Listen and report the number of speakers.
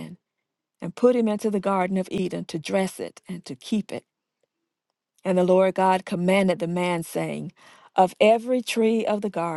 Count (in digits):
1